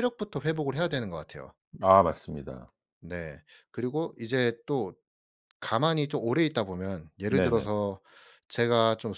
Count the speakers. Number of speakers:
two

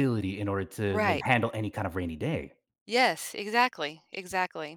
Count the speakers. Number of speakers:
two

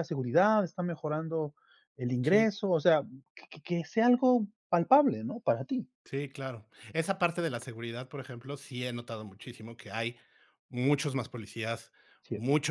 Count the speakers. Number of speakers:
two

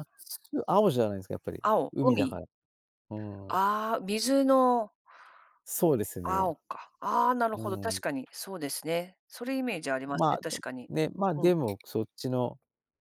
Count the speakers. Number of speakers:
two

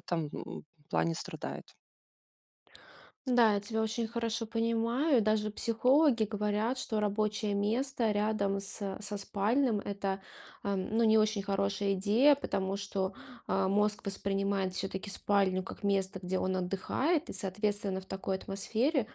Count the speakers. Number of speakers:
two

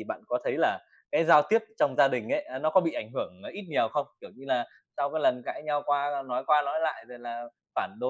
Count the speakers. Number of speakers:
one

